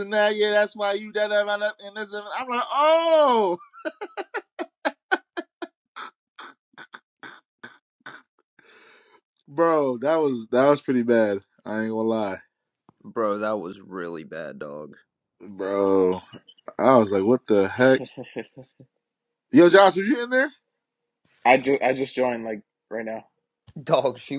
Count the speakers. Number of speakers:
3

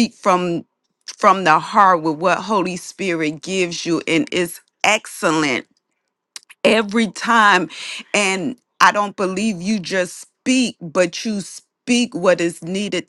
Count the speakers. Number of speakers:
1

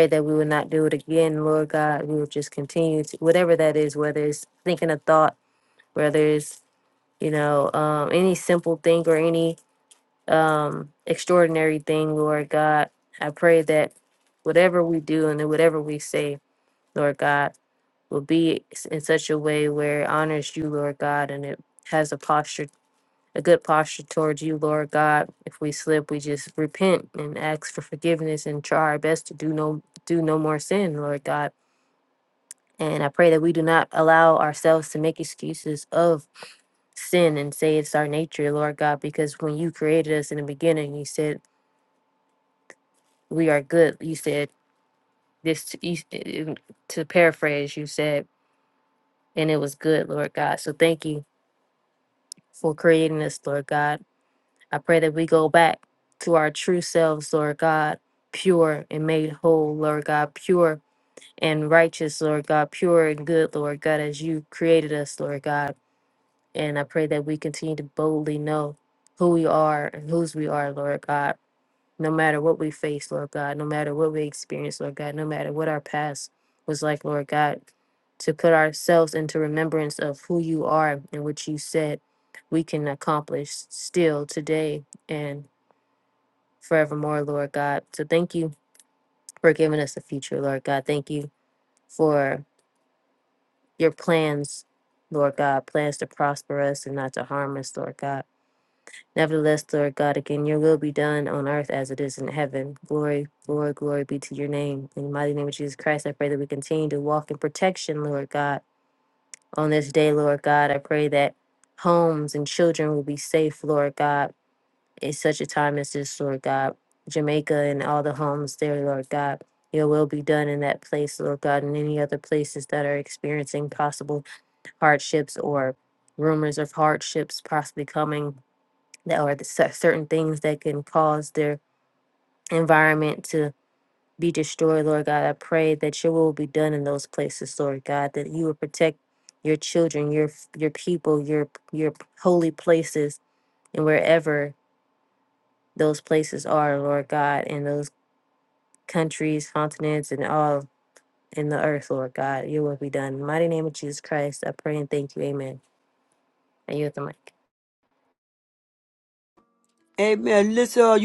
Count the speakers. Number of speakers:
2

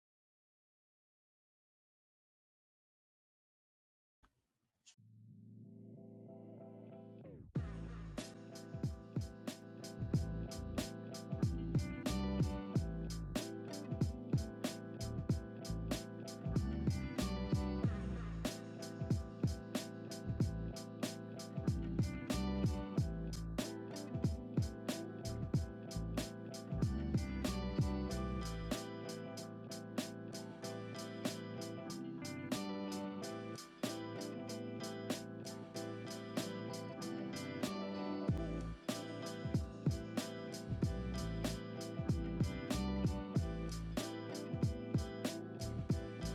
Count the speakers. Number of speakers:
0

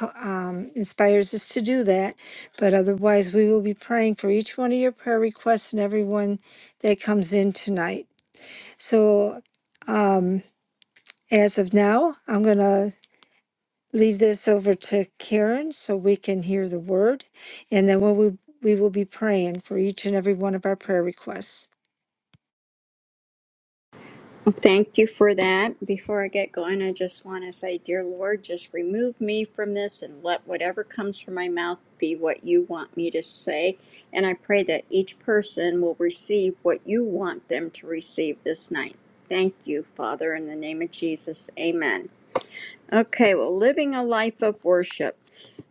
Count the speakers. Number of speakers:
2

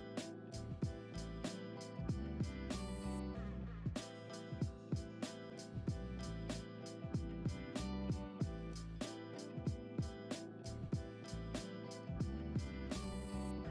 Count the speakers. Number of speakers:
0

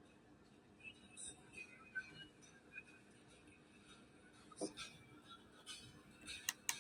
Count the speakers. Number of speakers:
0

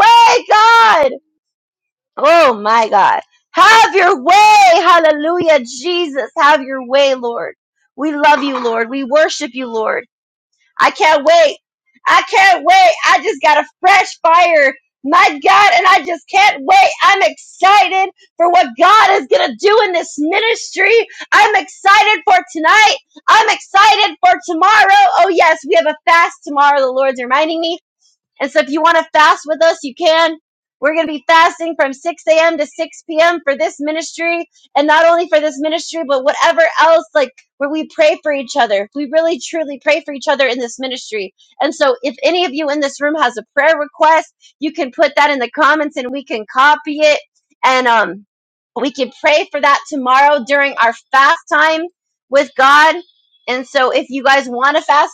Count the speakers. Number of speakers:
1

